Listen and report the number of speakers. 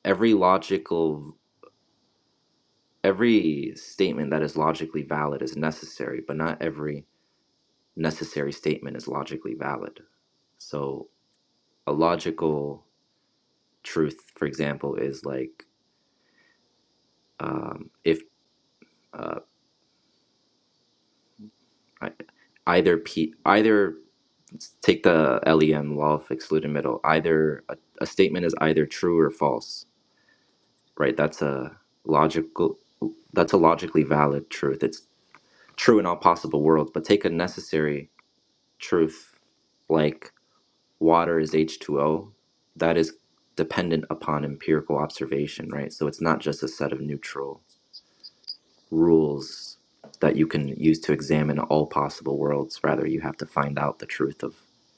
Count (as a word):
one